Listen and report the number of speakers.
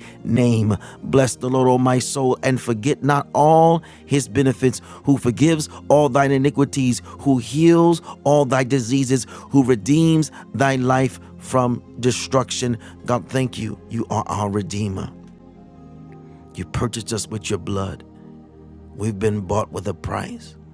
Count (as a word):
one